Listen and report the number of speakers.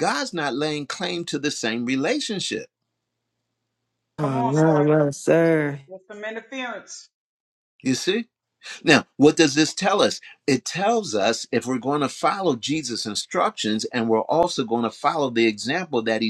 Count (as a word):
three